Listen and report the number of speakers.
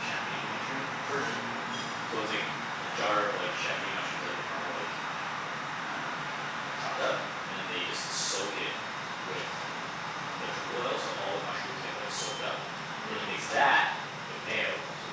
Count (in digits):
1